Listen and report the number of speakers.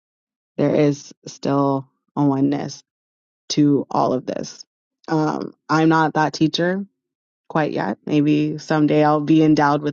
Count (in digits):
1